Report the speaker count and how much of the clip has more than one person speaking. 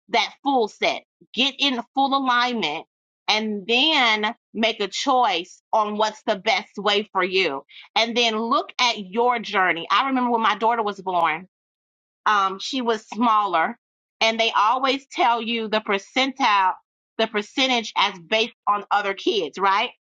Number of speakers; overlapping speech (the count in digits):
1, no overlap